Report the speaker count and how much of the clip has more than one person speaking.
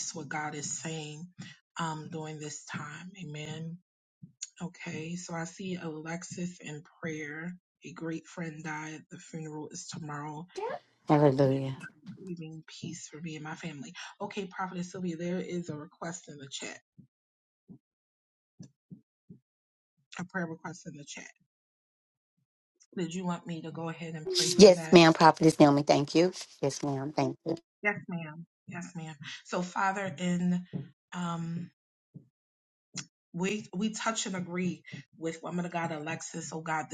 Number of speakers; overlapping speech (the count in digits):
2, about 1%